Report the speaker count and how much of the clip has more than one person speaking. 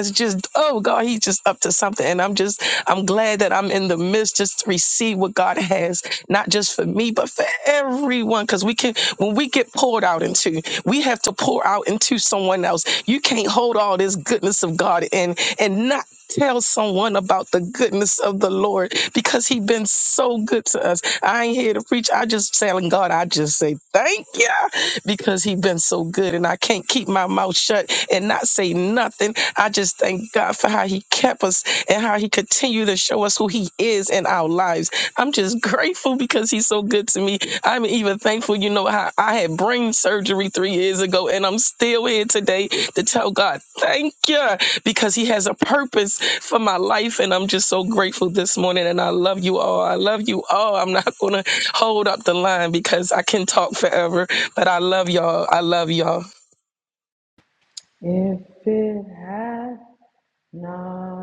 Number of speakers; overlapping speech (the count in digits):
2, no overlap